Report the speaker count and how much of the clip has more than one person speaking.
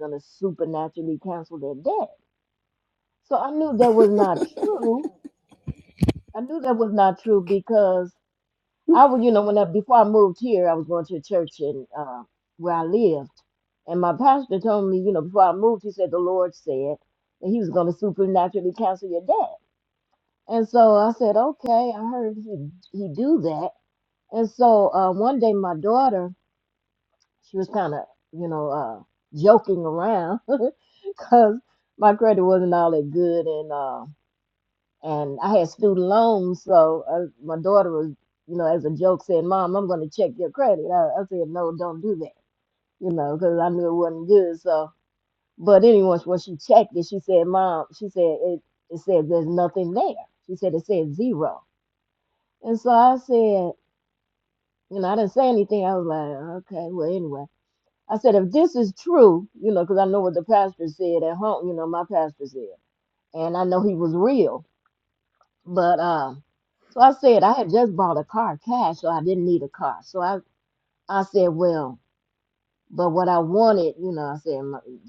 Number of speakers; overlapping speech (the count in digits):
1, no overlap